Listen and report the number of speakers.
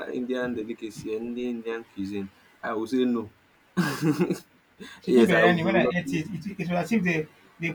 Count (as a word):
two